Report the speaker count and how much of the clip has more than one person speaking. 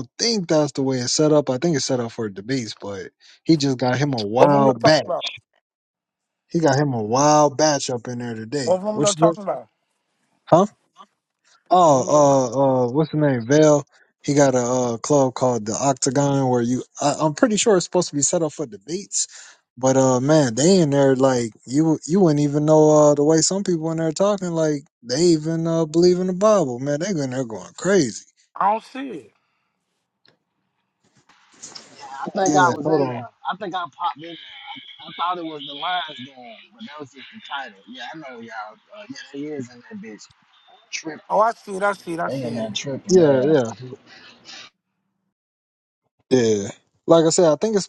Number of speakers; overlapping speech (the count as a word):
three, about 7%